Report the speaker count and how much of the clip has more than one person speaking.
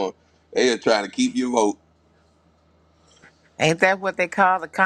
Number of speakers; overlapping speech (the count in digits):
2, no overlap